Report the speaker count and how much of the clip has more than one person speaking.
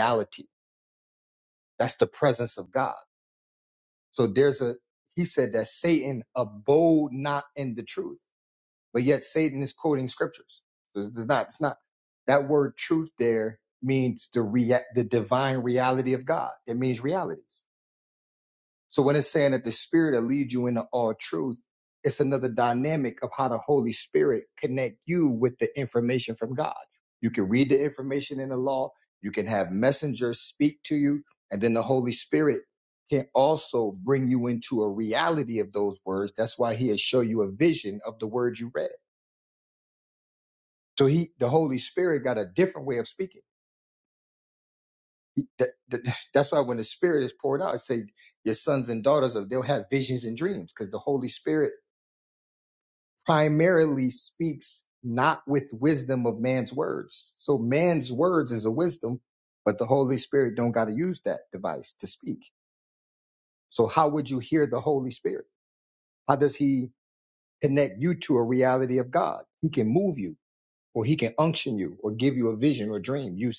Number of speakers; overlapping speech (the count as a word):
one, no overlap